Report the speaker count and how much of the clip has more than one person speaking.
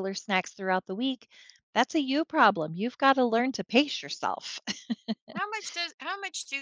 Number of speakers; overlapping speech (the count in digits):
2, no overlap